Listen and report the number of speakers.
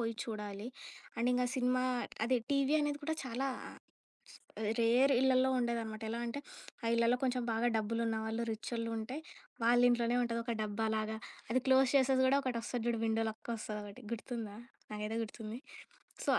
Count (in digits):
1